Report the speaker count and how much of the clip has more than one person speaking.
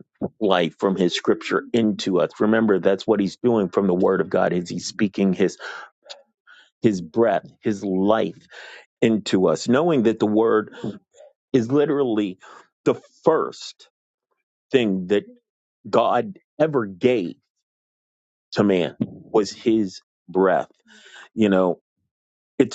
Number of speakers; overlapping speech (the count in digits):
1, no overlap